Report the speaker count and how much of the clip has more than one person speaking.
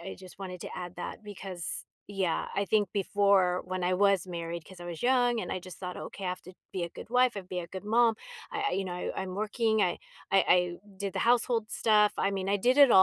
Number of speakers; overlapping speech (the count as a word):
one, no overlap